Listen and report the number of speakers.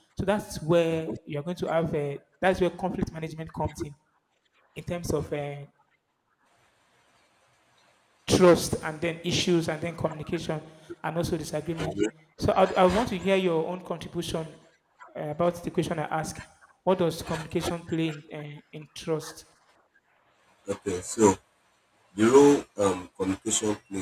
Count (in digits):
2